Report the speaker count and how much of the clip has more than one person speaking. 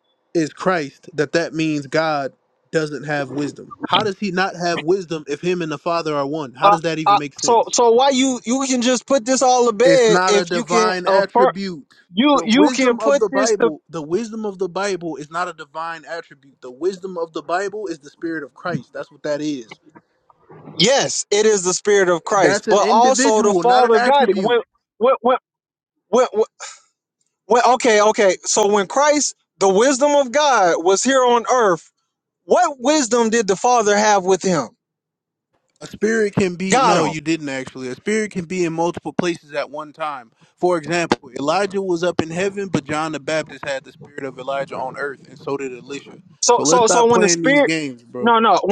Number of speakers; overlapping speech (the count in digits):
2, about 16%